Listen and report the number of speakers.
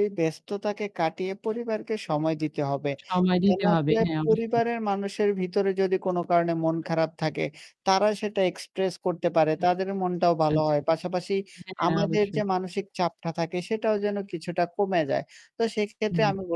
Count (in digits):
2